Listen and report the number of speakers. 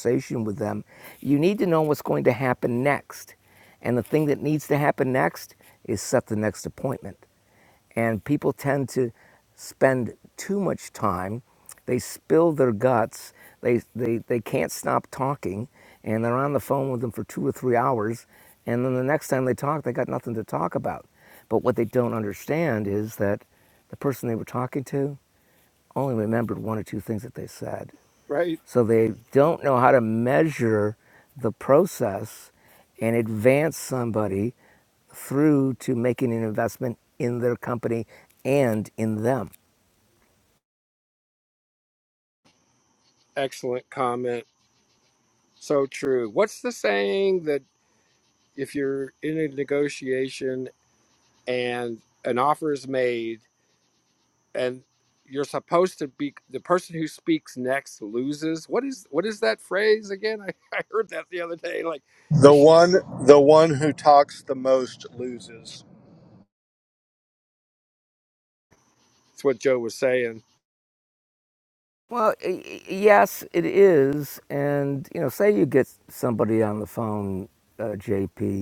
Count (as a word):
three